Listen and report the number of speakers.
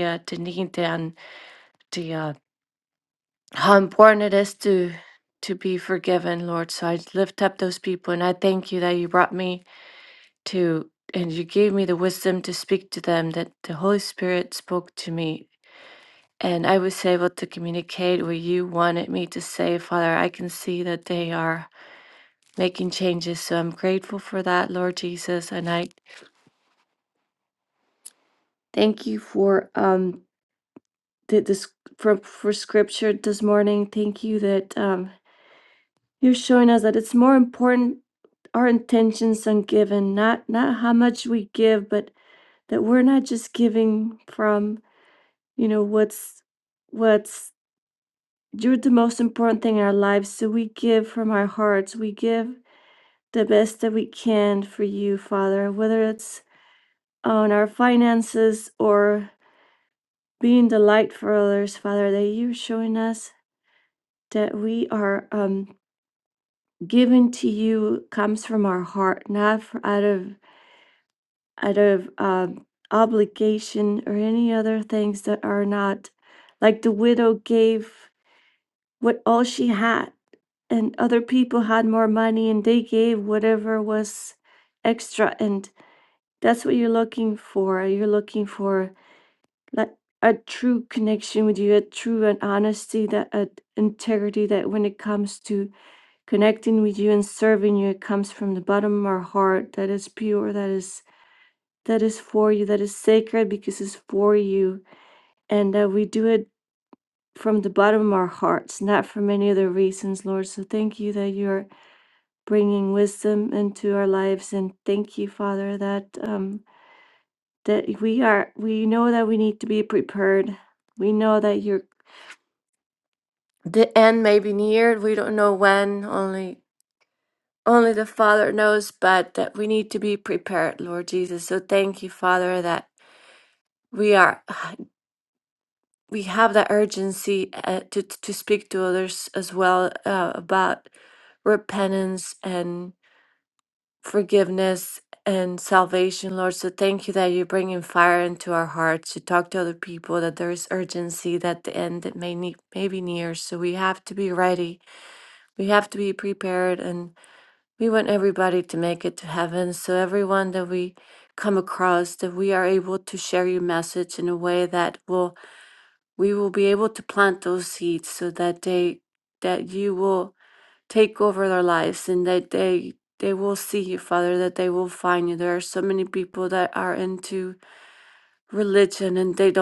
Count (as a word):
one